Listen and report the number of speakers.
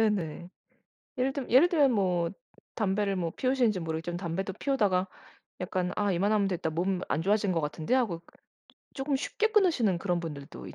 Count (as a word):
one